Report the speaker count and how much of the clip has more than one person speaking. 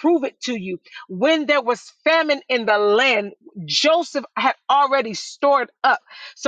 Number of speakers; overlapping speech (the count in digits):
1, no overlap